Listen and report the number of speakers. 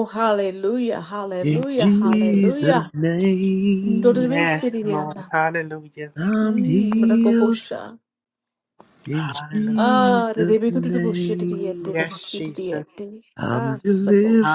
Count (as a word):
three